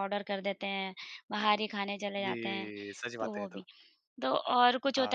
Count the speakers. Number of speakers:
2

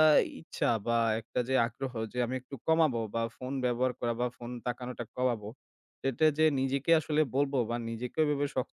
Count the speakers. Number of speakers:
1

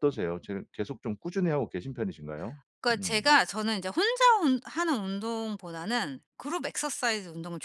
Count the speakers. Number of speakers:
2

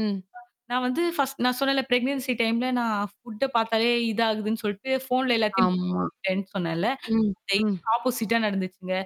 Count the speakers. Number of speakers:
2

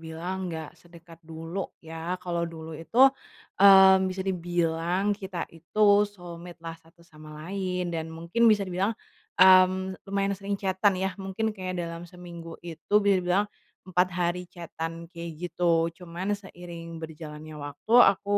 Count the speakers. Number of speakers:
1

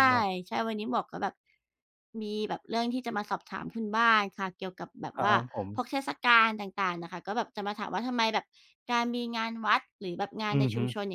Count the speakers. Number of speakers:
2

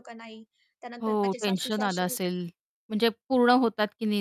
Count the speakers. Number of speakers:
2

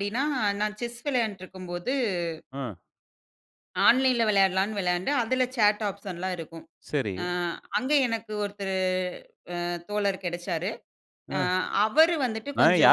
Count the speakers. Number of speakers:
2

